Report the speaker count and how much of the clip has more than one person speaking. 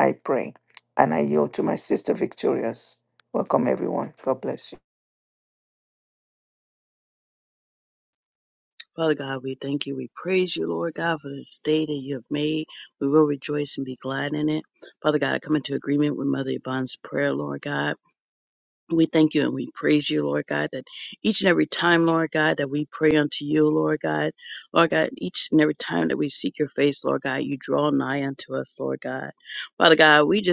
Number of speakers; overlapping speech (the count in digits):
2, no overlap